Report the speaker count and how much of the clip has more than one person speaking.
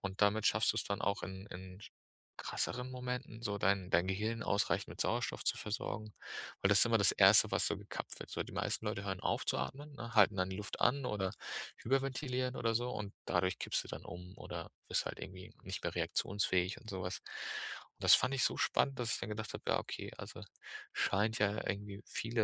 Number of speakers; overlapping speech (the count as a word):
one, no overlap